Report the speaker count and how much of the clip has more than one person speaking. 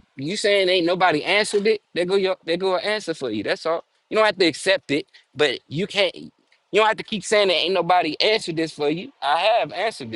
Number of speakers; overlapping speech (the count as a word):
one, no overlap